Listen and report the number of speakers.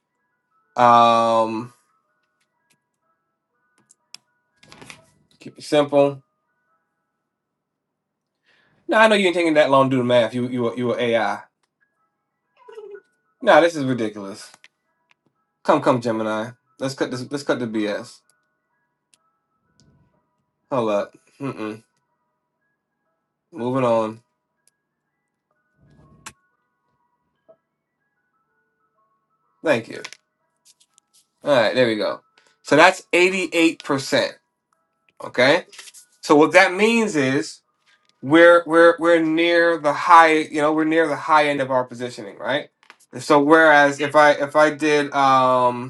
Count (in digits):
1